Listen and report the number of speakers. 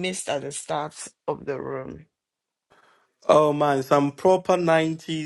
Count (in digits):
2